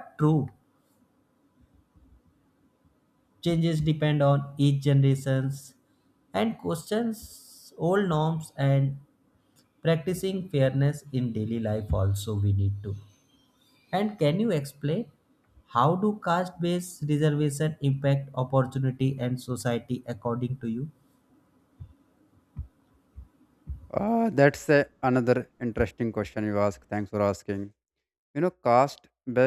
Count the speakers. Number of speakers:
2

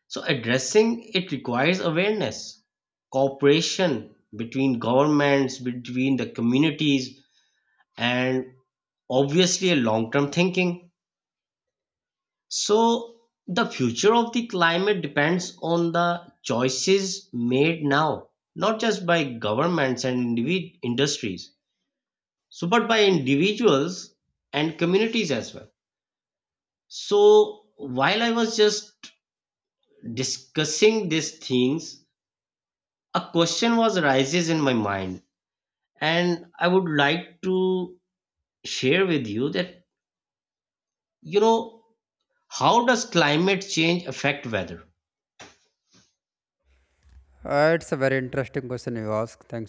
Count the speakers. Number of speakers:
2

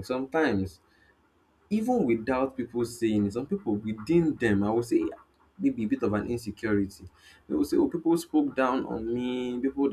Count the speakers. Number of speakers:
1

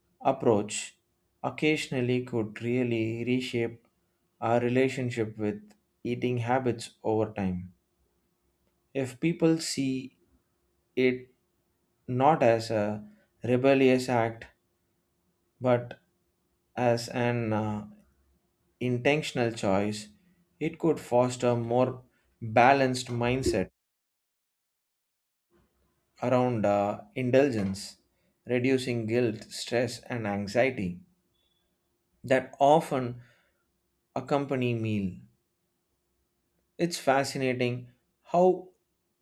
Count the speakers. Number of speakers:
1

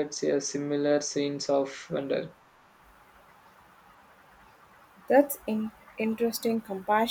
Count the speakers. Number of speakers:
2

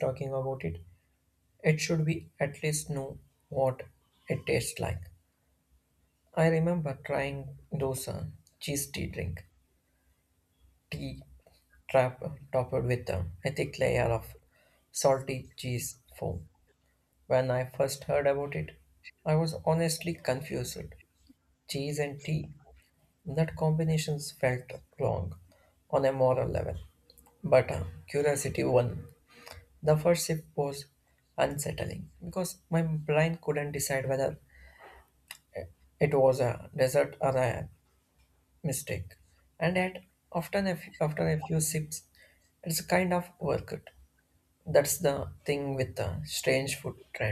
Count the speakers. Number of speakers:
1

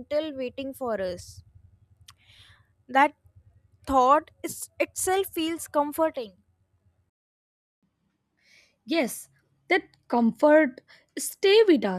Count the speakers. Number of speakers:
2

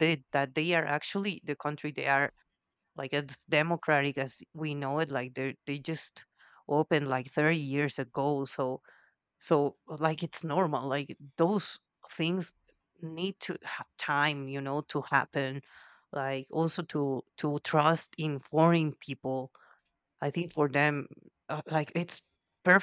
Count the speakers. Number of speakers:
1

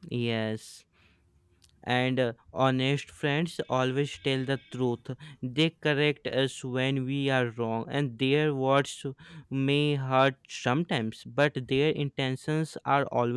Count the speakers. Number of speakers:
1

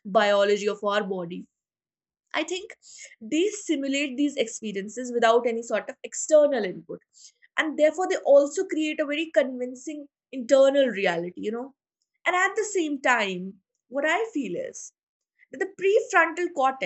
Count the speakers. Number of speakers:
1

